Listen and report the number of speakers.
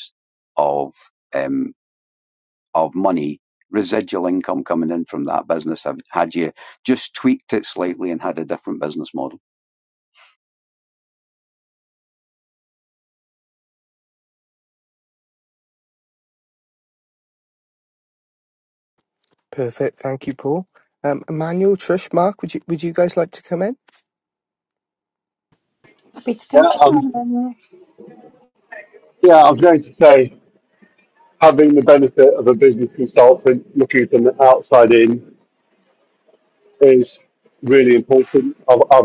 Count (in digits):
4